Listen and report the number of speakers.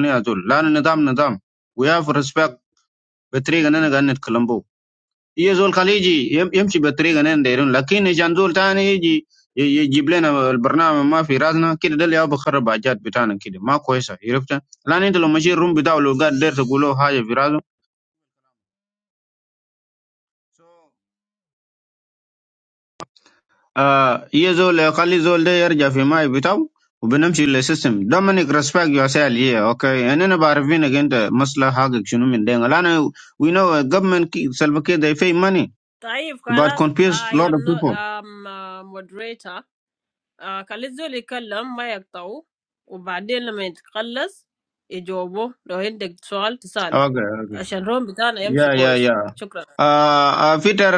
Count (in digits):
2